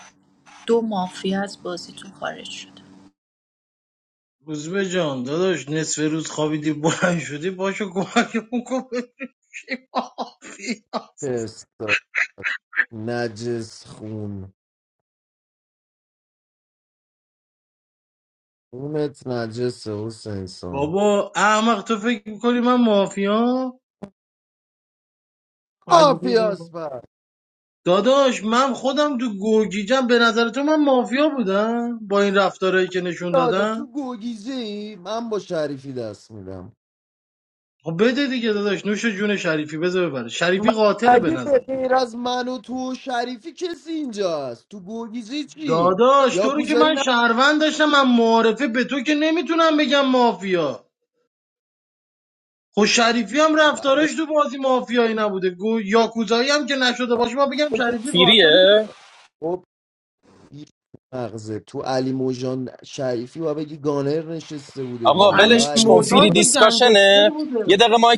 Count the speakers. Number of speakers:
4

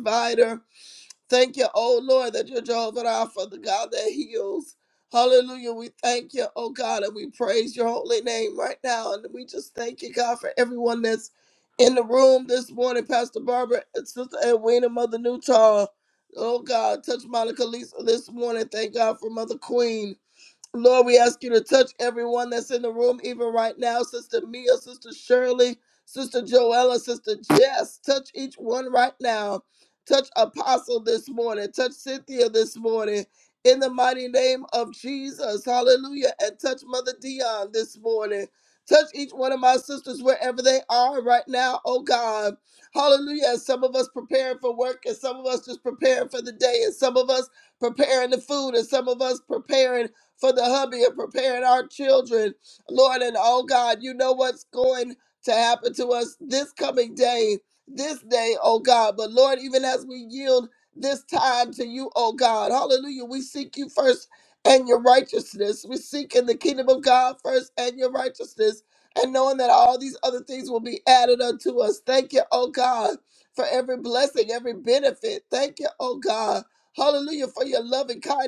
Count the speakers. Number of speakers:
1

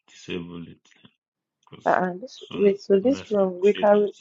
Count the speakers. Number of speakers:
2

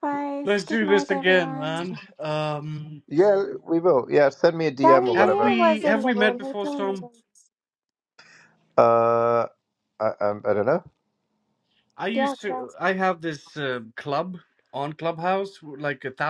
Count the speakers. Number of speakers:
3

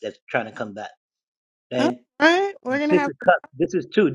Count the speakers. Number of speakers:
2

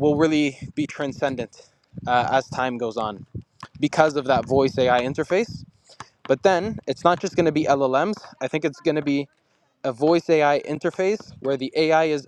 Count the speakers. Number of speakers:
1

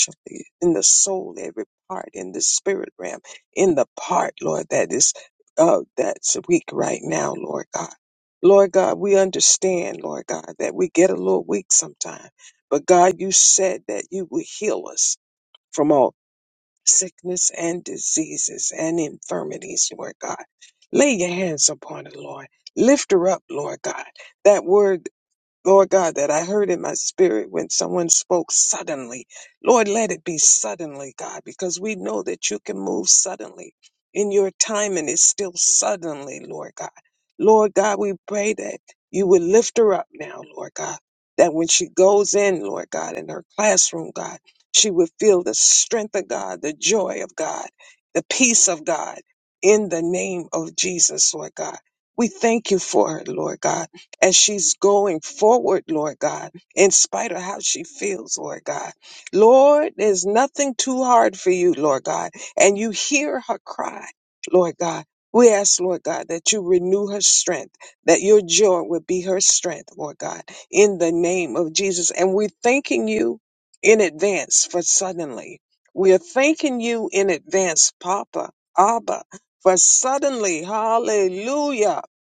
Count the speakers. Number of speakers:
1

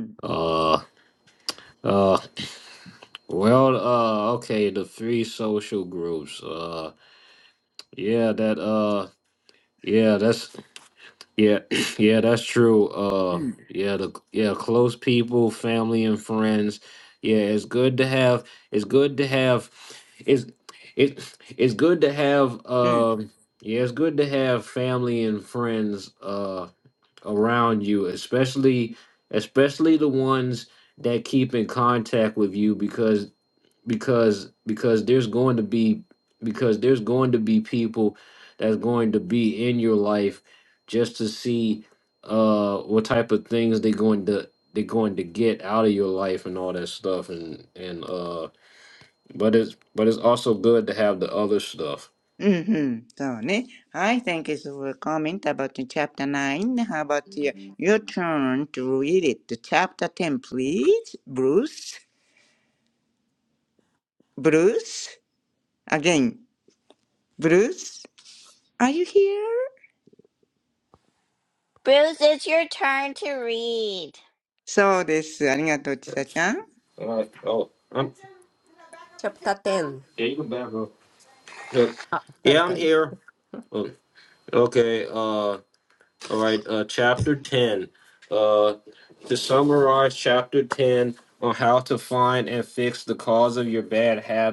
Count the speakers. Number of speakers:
4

